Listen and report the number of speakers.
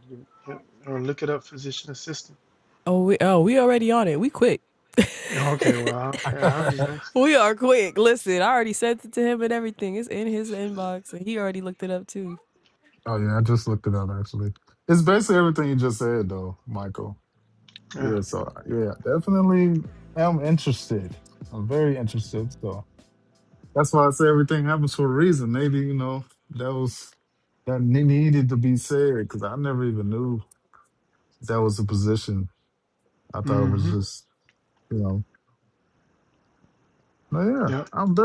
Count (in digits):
3